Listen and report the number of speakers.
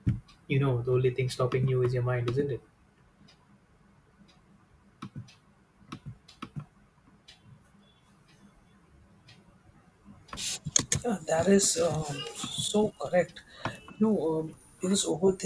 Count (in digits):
2